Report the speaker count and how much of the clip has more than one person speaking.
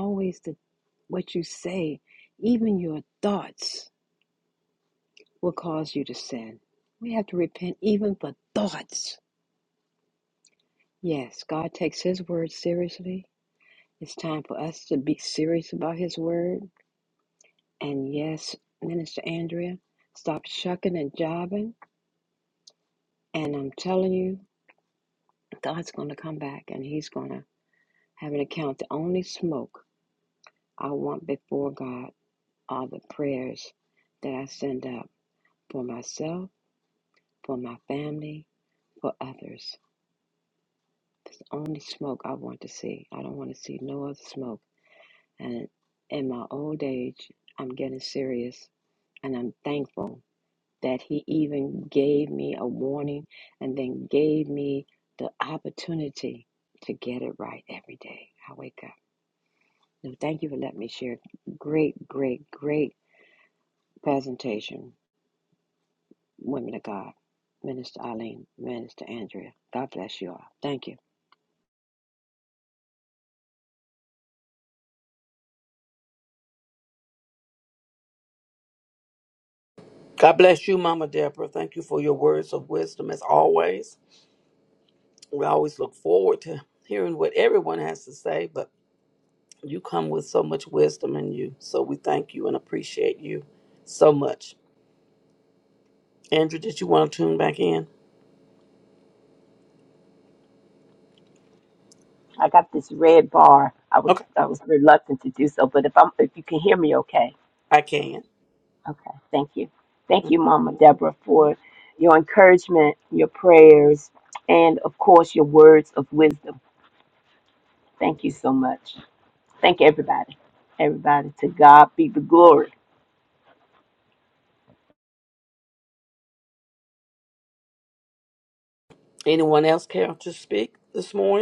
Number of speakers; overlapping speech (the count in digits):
3, under 1%